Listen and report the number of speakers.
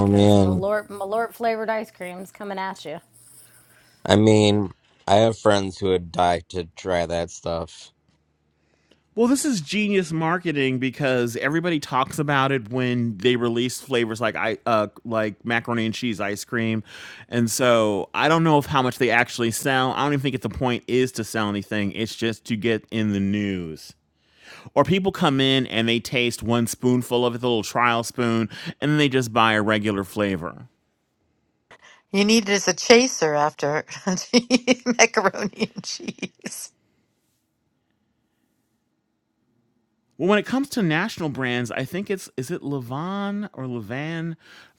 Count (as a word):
four